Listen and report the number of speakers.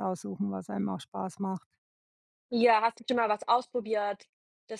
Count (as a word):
two